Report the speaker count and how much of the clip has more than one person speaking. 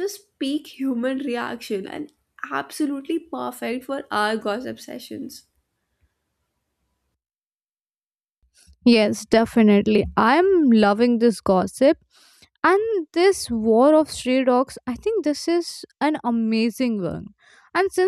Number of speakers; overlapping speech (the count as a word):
two, no overlap